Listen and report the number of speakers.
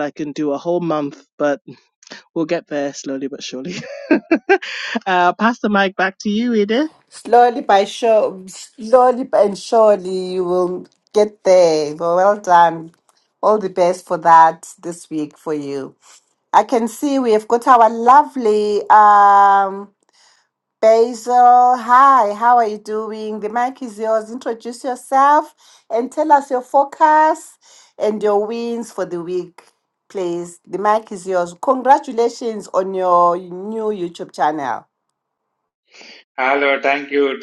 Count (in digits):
3